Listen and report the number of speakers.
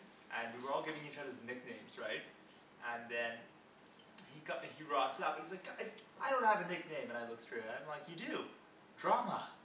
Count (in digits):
1